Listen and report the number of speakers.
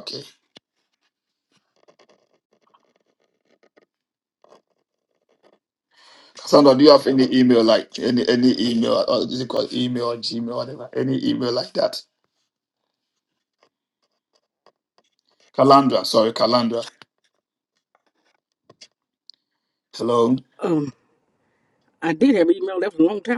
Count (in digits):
2